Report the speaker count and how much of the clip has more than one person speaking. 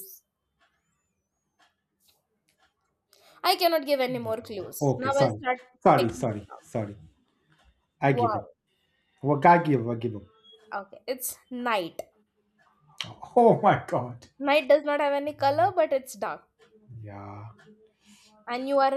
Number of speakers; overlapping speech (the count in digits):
2, about 9%